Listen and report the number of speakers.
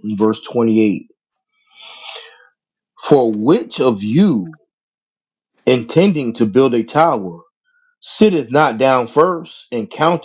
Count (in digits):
1